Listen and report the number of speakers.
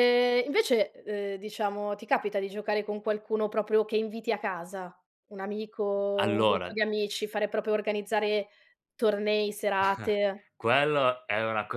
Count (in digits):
2